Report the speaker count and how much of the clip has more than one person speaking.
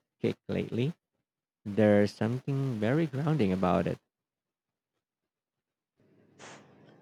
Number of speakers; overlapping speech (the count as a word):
one, no overlap